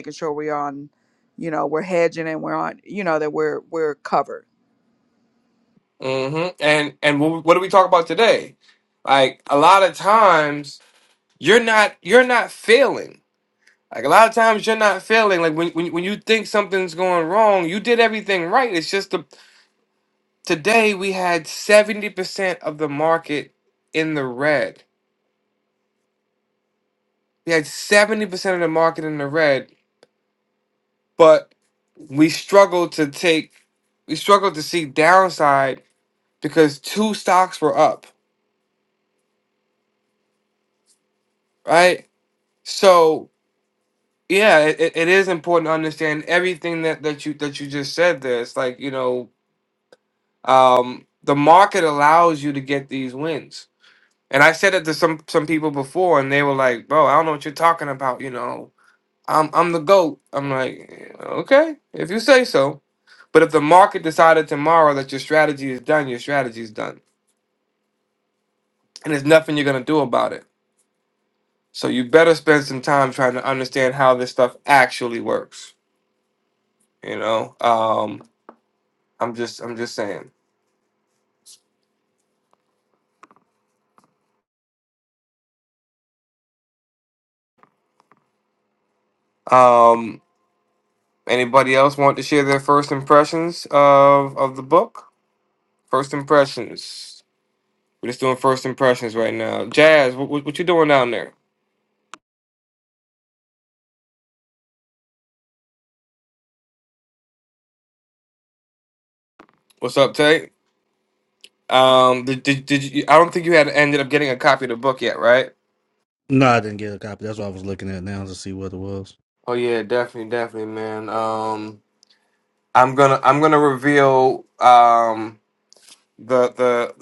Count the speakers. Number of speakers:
three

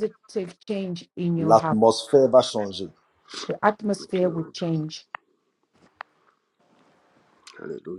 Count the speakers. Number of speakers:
three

